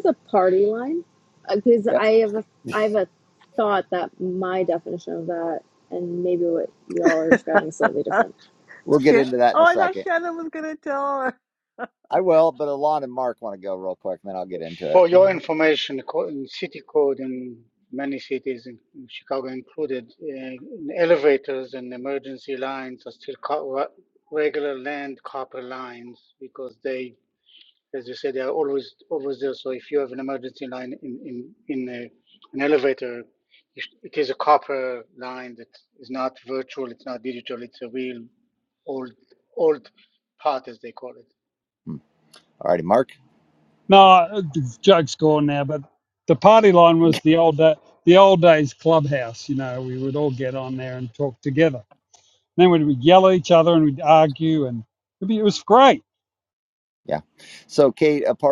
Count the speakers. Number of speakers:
5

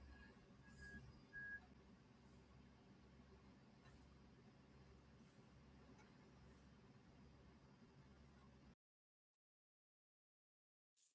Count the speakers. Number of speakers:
0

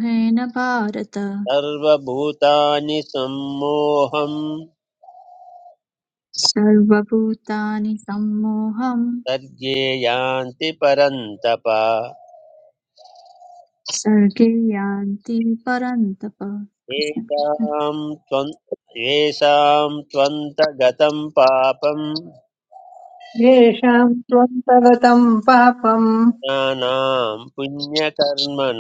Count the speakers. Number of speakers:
3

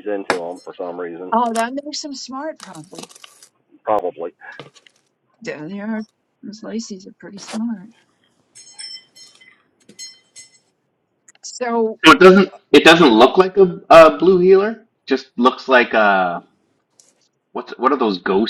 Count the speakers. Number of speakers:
3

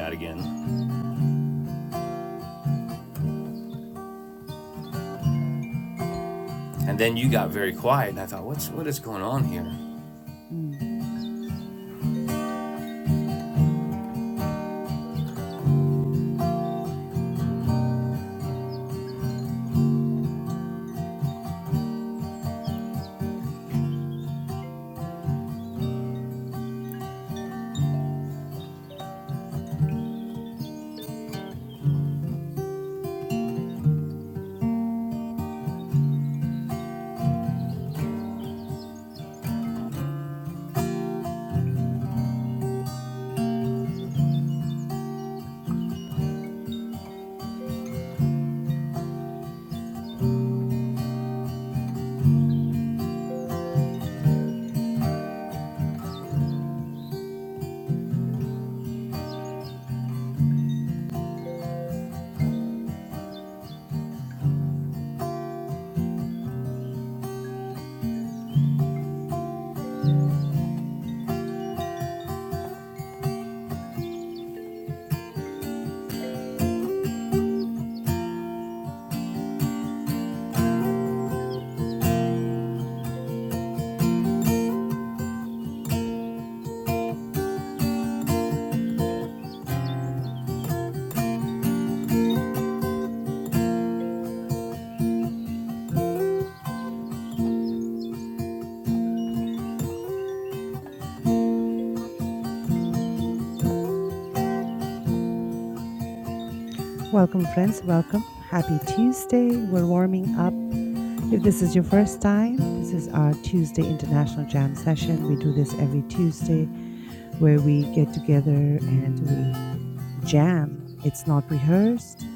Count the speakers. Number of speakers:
2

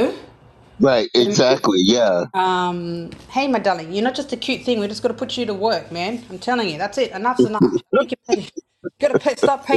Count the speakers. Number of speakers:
2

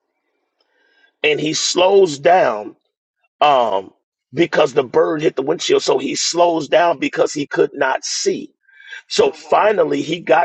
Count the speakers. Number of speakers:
1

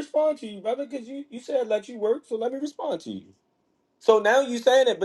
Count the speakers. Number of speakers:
1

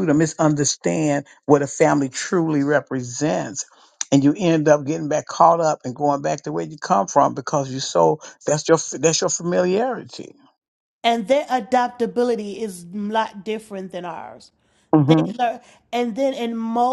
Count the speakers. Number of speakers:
2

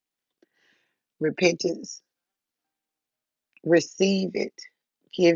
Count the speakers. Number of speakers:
1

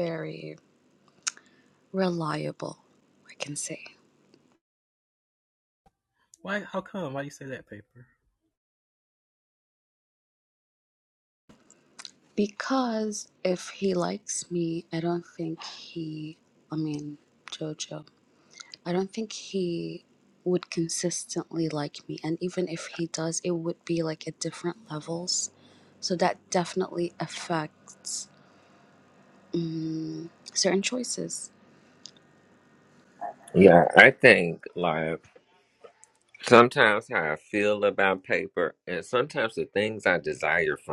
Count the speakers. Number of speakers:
3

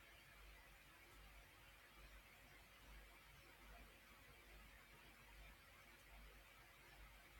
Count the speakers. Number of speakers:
0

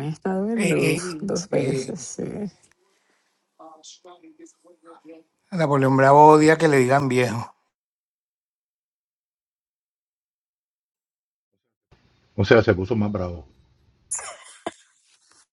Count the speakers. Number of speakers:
3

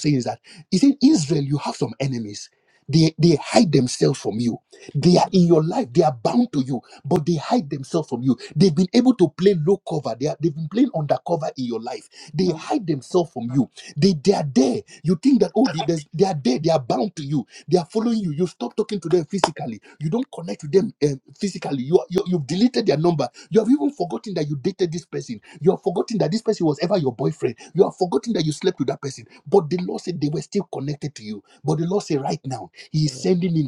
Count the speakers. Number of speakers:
1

